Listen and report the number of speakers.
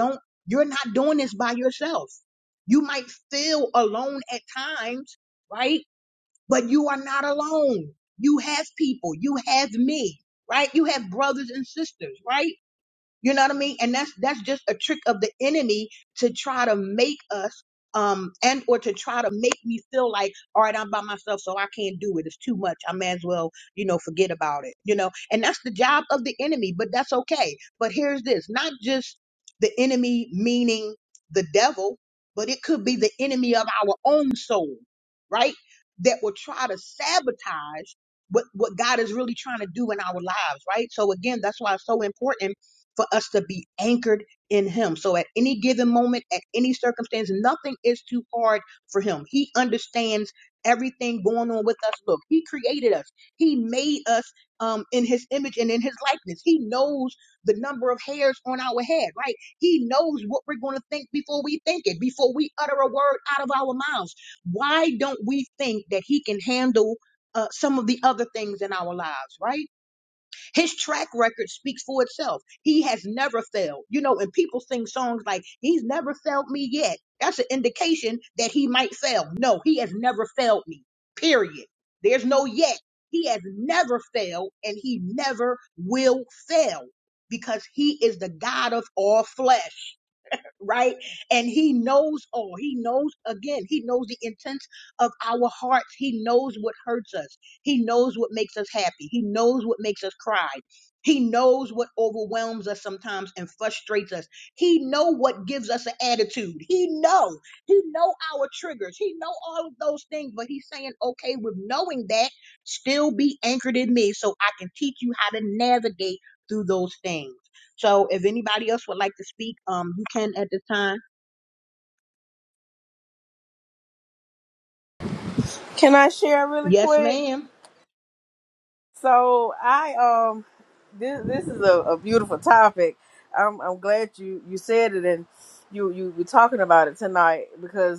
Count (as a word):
two